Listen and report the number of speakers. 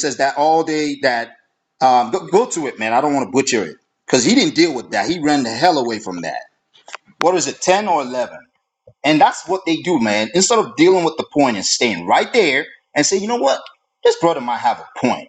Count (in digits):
1